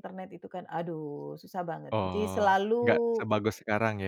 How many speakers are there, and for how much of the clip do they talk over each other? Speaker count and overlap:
2, about 24%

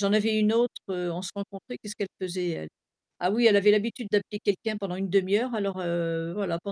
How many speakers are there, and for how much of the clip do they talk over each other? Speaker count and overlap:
1, no overlap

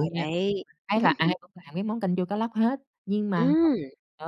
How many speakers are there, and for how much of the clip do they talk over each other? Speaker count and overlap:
2, about 10%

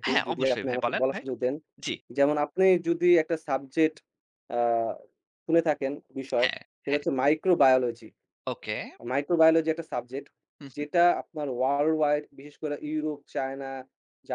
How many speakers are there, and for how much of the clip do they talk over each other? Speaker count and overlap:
2, about 11%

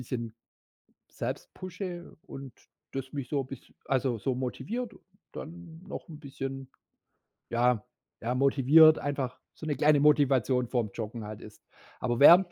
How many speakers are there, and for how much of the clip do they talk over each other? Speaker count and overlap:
1, no overlap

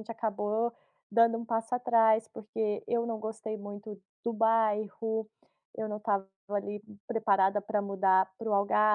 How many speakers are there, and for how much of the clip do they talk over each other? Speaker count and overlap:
1, no overlap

